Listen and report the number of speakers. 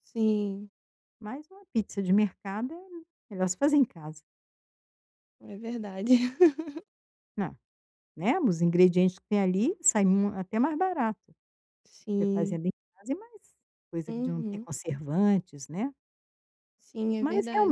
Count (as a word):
two